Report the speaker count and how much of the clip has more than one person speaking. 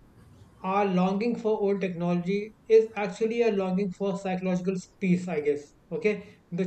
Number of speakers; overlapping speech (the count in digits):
1, no overlap